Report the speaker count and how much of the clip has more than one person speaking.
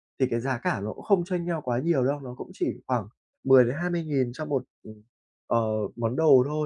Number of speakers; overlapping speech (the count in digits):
1, no overlap